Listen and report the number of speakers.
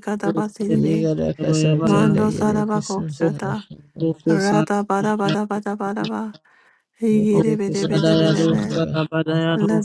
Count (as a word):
three